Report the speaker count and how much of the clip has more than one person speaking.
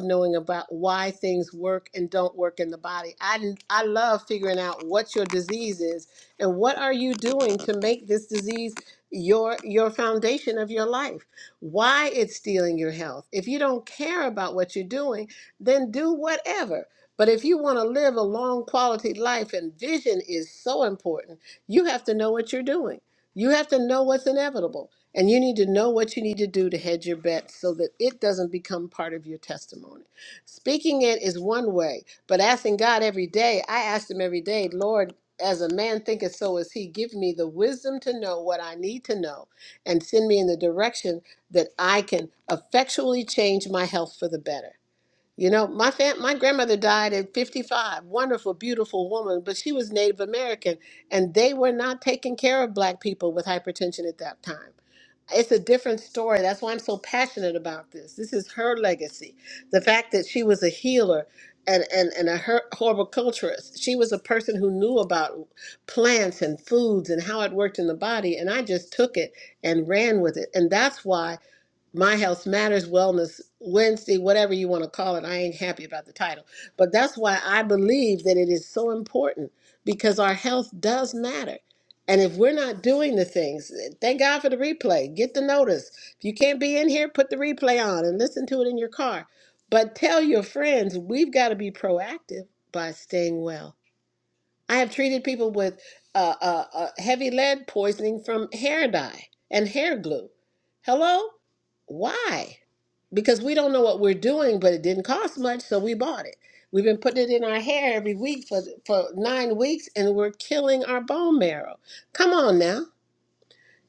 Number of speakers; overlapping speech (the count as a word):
one, no overlap